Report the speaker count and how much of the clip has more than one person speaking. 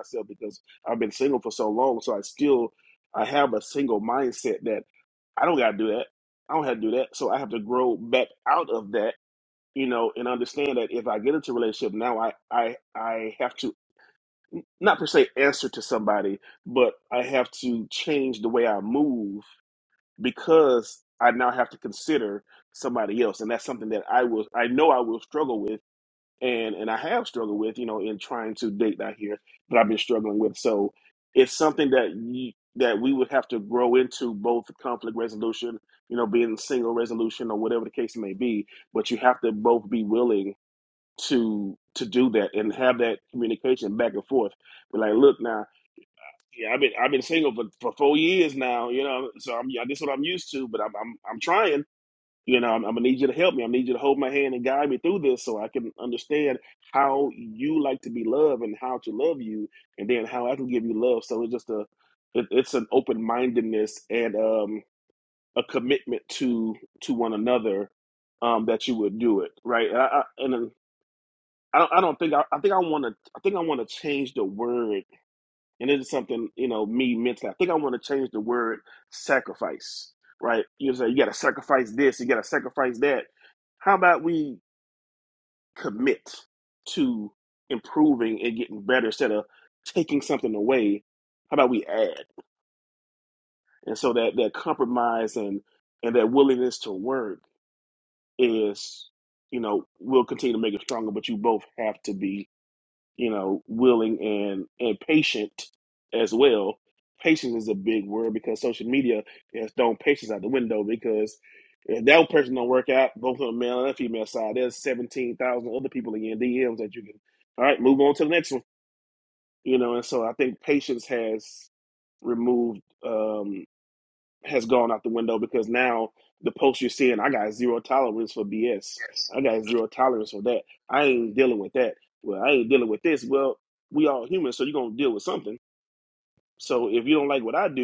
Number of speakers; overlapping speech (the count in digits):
1, no overlap